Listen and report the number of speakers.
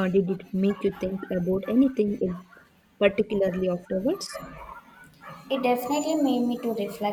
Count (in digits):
2